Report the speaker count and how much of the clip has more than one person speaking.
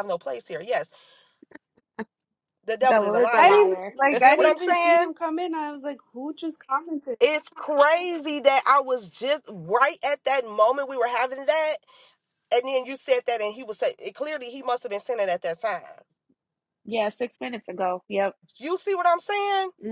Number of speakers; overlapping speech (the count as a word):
three, about 10%